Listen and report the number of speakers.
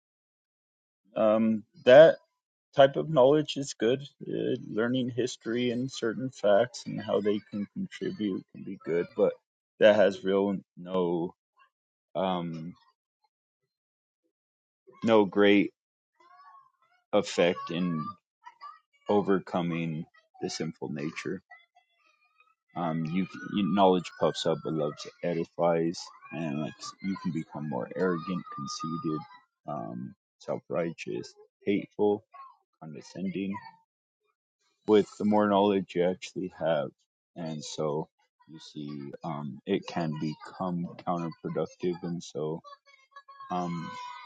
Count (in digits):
1